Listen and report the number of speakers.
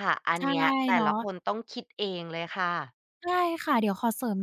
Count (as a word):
two